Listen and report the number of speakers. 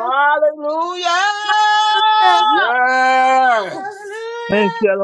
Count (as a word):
three